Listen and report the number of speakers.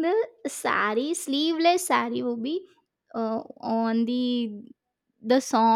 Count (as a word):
one